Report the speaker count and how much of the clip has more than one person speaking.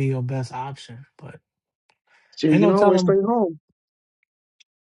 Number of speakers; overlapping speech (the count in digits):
2, about 14%